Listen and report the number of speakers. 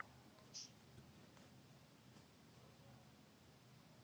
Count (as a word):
zero